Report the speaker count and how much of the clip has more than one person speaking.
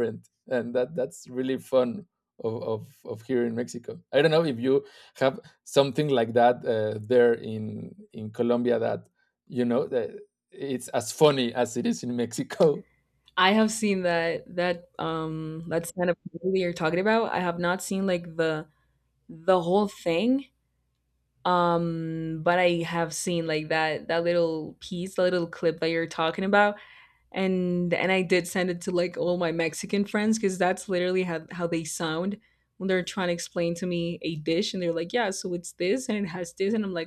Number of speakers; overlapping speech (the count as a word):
two, no overlap